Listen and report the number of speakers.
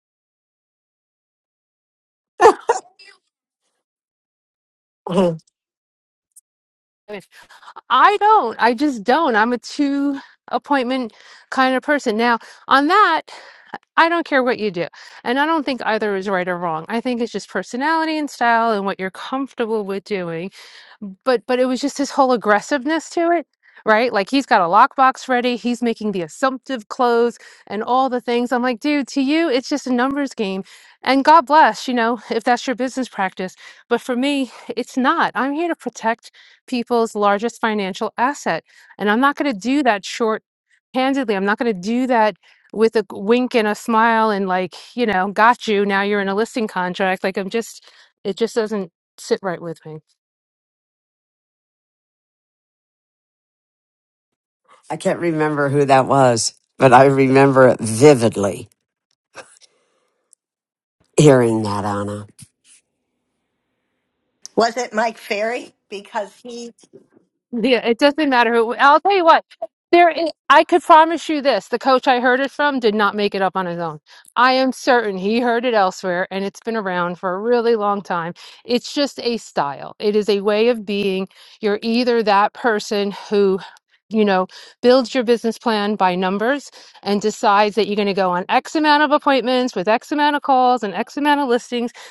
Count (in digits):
3